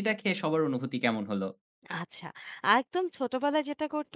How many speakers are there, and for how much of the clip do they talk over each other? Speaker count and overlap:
2, no overlap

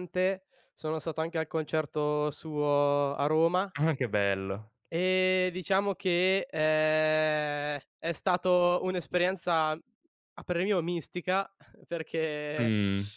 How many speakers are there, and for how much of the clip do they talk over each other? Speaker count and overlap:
2, about 1%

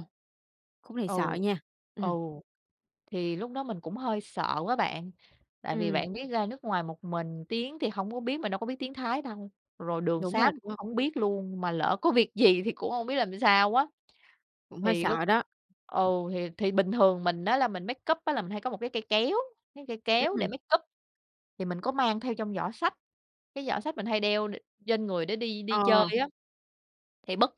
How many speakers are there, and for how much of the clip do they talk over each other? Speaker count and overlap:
2, about 8%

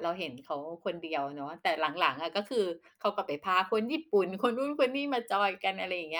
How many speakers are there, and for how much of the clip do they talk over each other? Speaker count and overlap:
1, no overlap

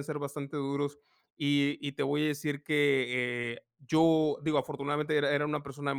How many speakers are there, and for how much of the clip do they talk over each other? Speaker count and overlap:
1, no overlap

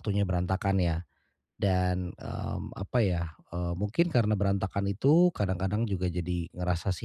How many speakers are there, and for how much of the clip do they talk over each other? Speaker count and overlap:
1, no overlap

